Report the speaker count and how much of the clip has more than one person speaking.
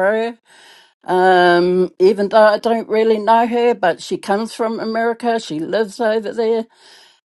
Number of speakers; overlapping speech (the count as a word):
one, no overlap